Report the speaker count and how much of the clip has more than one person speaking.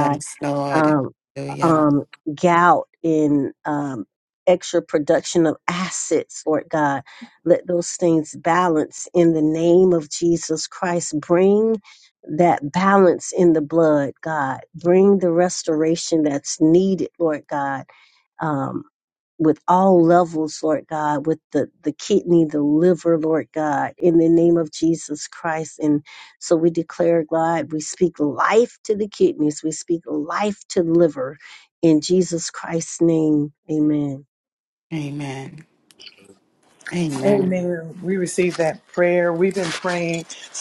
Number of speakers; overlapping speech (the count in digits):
3, about 3%